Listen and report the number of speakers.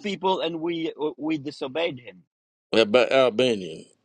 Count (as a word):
two